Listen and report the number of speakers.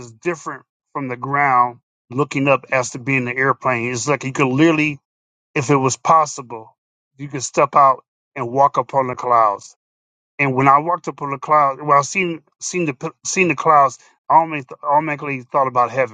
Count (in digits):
1